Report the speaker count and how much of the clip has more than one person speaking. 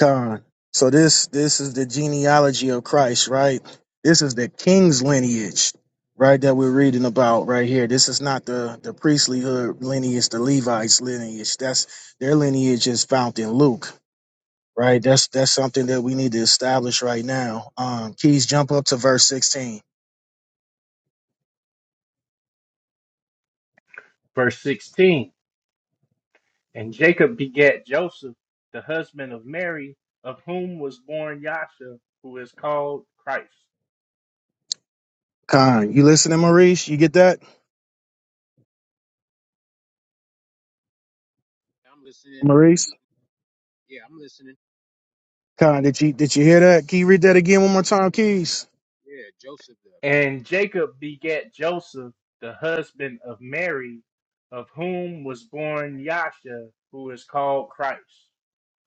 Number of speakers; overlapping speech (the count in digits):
3, about 1%